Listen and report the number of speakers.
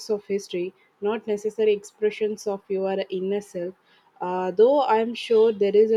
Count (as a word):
one